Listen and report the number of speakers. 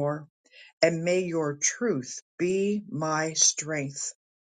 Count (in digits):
1